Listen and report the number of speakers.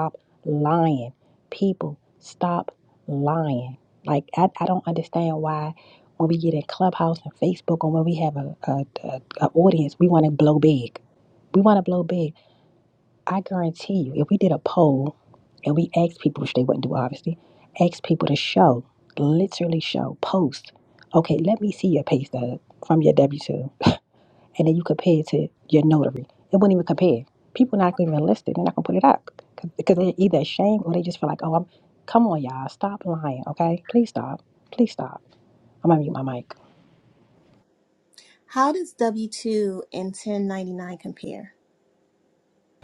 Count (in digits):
2